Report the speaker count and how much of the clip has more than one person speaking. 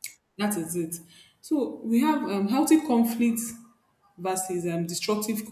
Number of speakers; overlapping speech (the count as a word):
one, no overlap